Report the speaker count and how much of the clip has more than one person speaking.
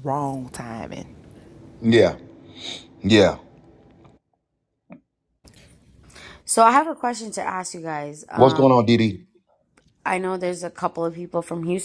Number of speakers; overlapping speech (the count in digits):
3, about 2%